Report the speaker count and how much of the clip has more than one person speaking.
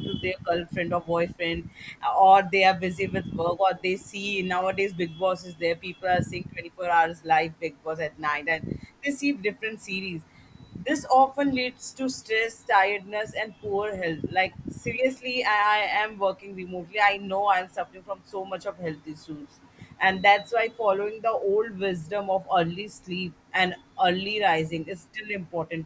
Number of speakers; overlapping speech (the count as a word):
one, no overlap